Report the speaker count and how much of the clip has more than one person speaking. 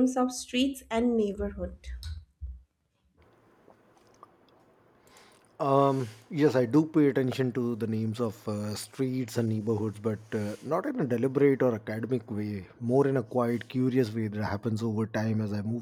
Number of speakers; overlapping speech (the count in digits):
2, no overlap